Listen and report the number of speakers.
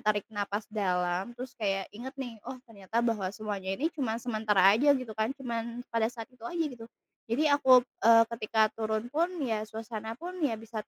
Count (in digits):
1